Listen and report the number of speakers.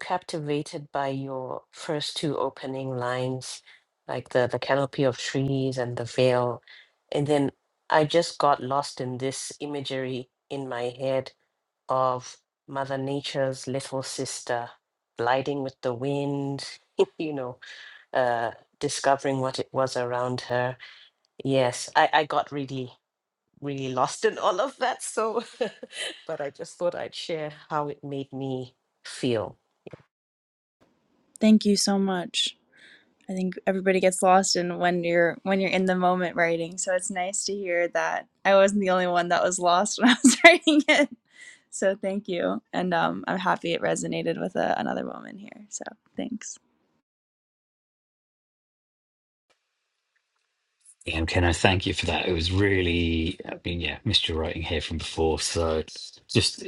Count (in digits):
3